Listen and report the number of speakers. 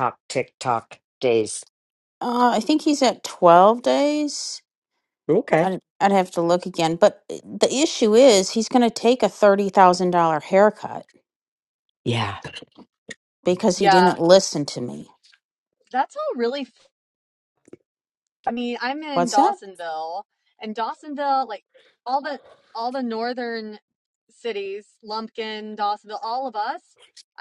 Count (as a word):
three